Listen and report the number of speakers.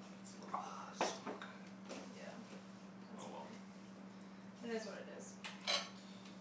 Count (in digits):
2